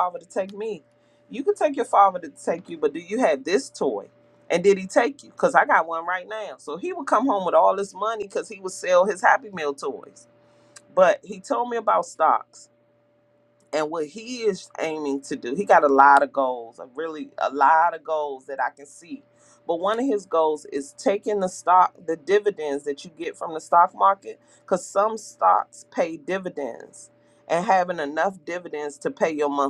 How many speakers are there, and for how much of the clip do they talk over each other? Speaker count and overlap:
1, no overlap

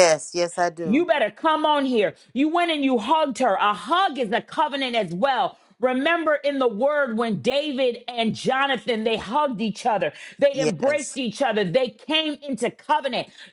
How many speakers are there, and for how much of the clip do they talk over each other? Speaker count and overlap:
2, about 6%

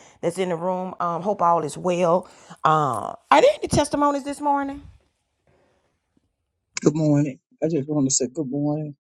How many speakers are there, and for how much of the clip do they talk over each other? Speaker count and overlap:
2, no overlap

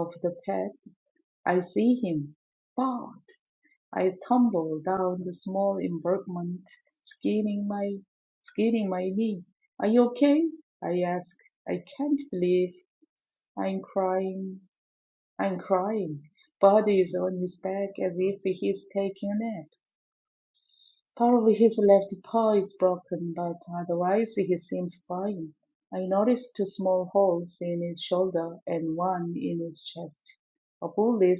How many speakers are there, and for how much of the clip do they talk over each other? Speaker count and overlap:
1, no overlap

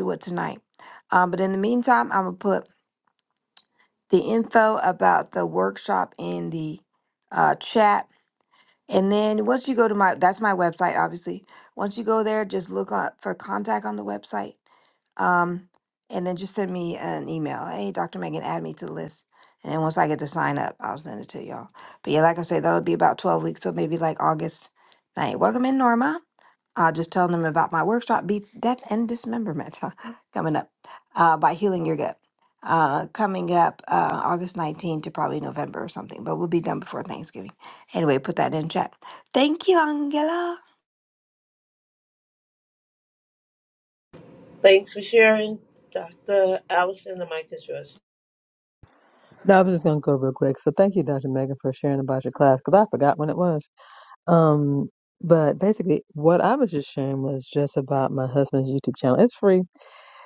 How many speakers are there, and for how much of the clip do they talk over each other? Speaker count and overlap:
3, no overlap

